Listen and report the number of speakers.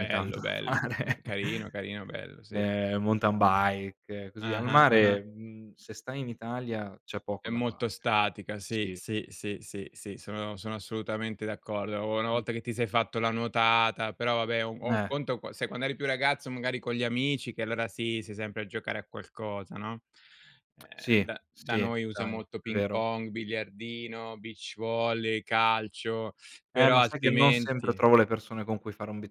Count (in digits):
2